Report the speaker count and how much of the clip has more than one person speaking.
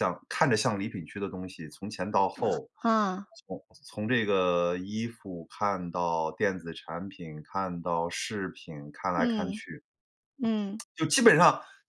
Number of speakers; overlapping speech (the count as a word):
two, about 4%